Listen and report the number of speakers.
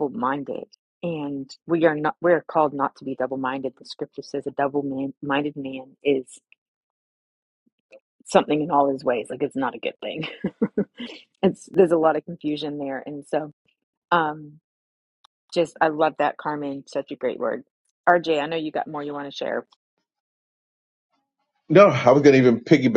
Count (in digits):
2